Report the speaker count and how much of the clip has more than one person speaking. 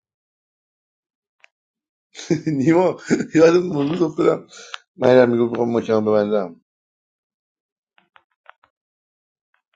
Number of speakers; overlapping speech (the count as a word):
one, no overlap